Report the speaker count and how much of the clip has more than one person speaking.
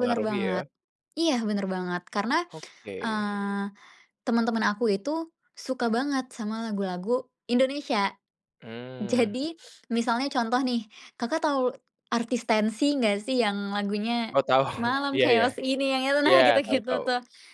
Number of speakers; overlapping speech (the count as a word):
two, about 15%